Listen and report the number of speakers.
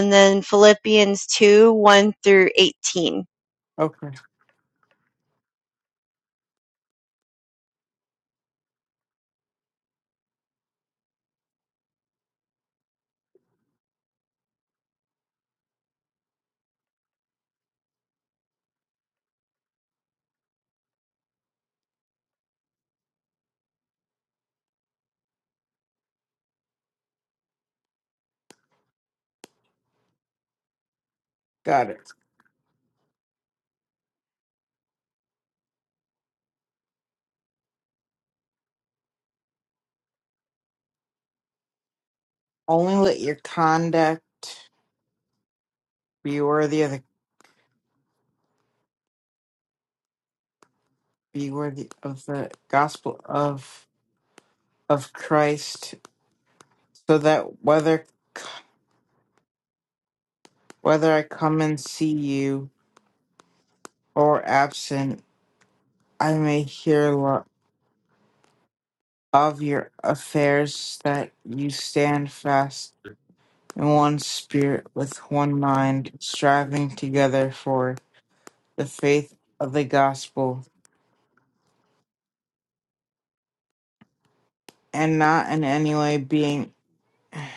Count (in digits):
2